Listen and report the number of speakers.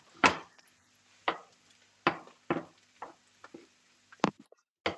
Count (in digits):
0